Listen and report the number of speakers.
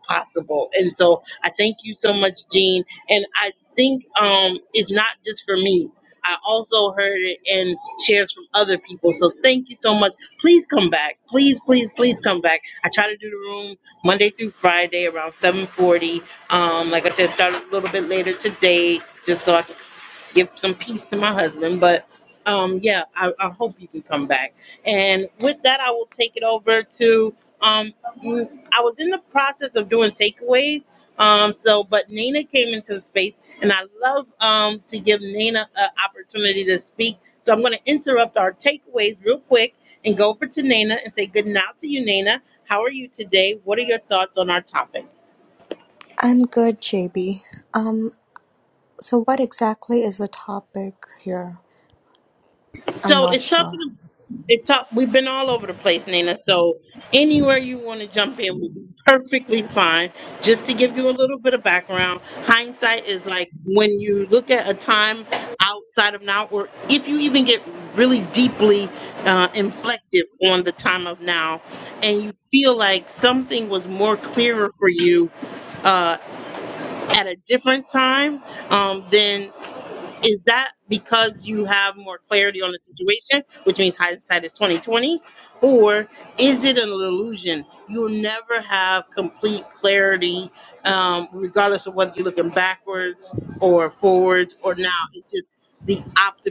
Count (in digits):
2